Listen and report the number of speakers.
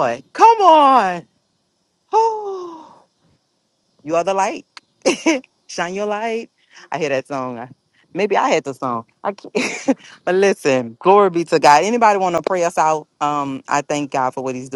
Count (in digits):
1